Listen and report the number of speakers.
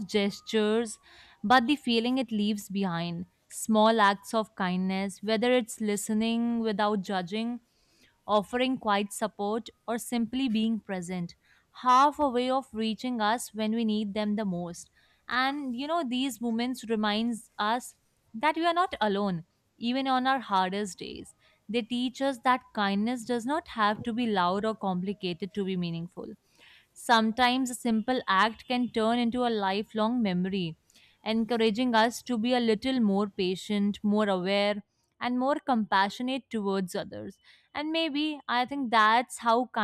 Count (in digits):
1